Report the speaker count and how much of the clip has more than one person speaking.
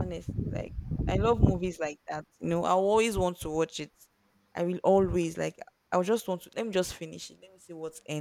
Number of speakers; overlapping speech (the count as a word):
one, no overlap